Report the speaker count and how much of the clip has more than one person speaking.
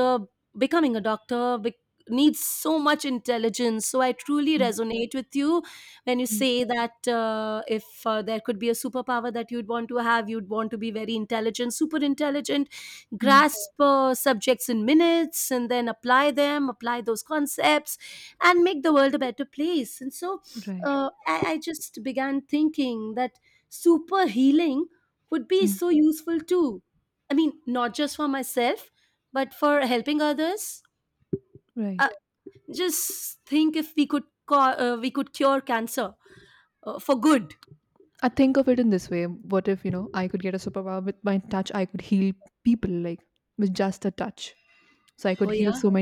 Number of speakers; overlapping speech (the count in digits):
2, about 3%